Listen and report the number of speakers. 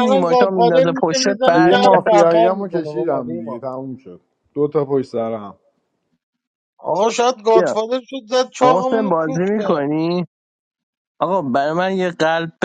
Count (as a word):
three